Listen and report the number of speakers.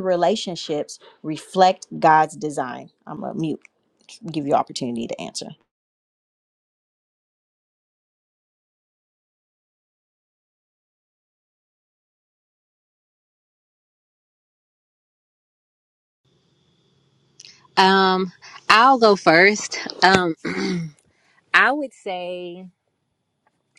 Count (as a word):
two